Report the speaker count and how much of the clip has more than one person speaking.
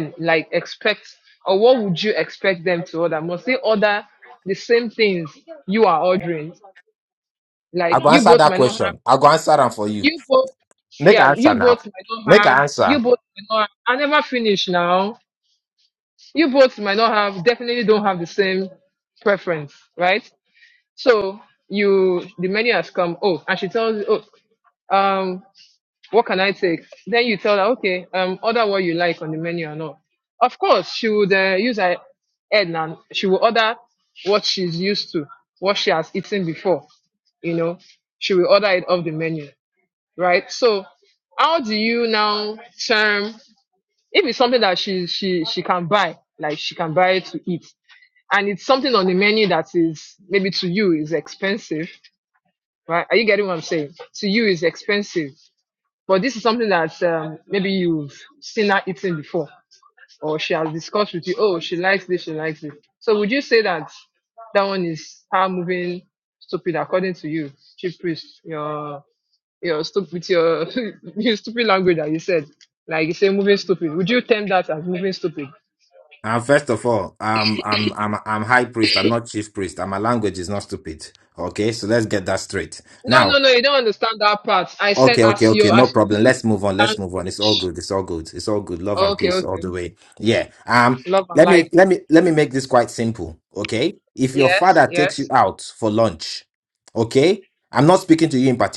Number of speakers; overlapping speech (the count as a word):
two, about 7%